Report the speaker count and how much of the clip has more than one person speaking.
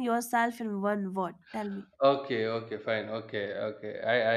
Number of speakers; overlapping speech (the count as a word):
two, no overlap